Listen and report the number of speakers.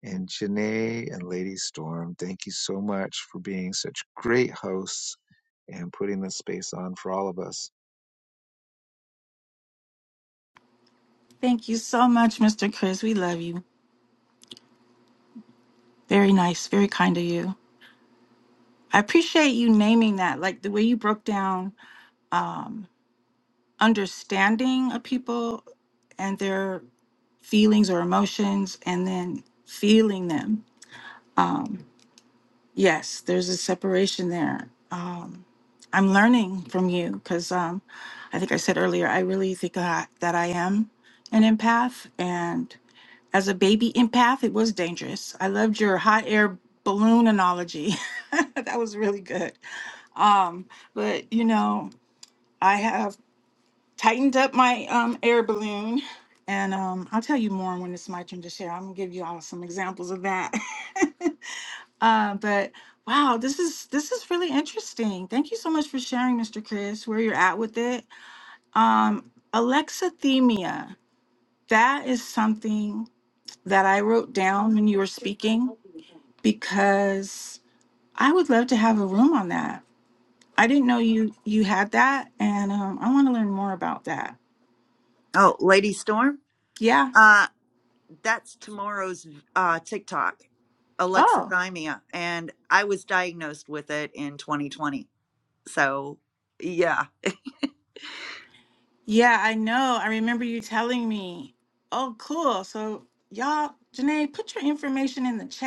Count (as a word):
three